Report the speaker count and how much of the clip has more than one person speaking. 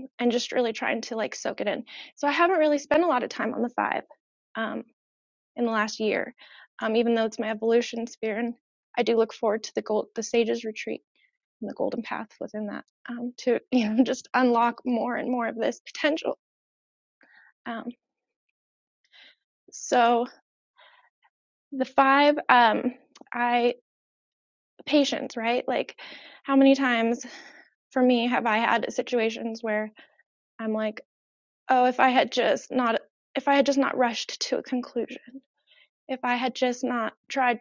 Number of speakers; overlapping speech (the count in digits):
1, no overlap